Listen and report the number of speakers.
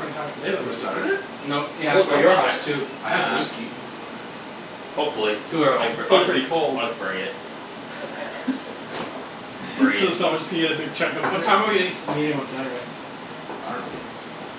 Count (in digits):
4